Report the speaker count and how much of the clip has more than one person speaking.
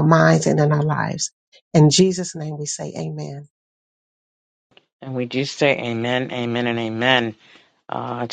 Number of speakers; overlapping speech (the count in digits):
2, no overlap